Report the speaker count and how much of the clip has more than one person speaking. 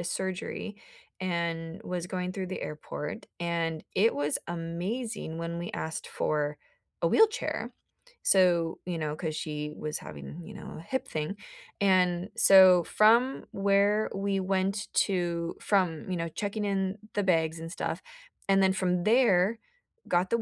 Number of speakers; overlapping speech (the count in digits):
1, no overlap